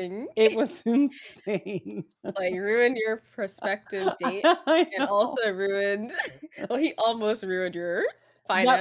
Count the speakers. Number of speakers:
2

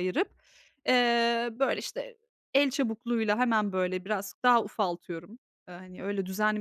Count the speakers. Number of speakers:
1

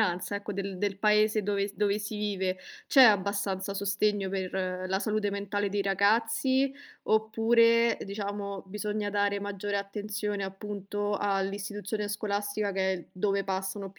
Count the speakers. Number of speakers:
1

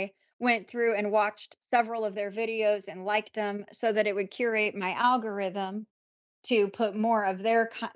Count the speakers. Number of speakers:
1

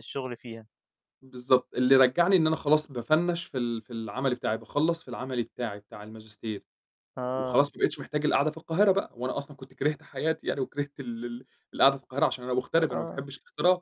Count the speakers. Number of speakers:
2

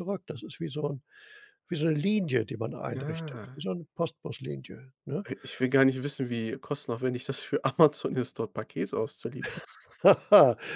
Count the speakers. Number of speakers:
2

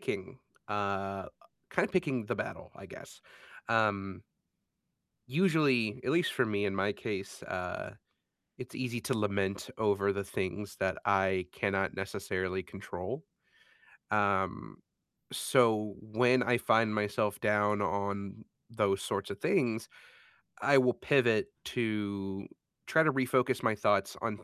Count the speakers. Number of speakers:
1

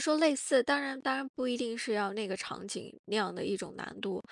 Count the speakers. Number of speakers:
1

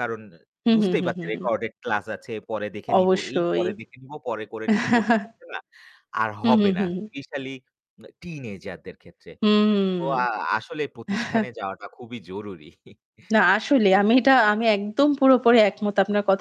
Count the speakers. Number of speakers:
2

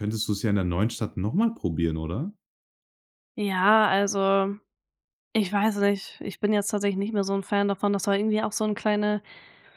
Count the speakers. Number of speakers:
2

